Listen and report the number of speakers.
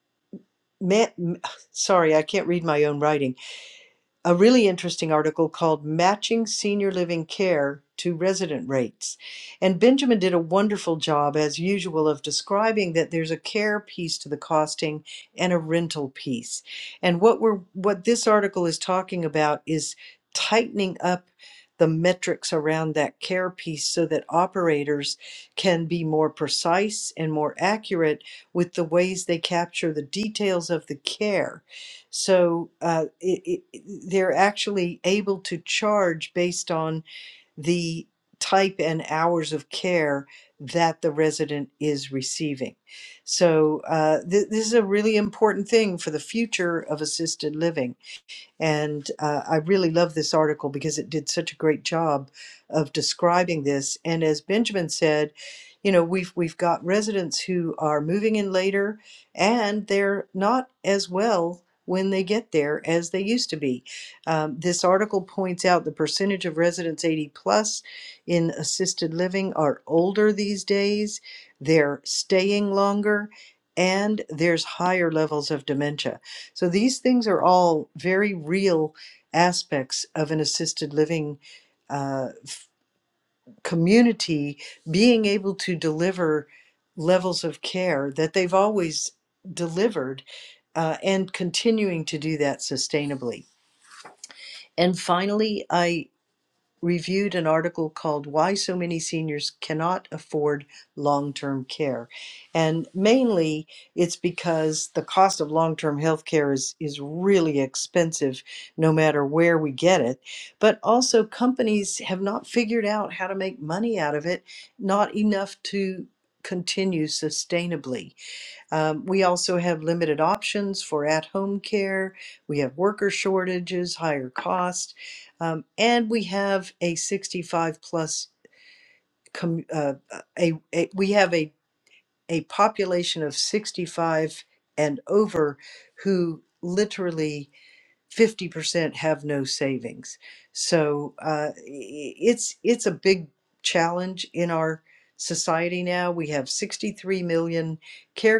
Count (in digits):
1